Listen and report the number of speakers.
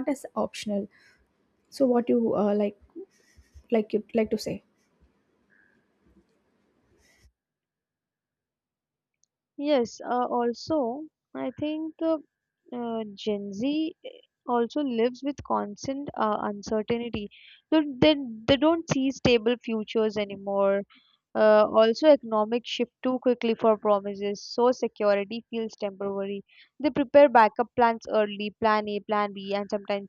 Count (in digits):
2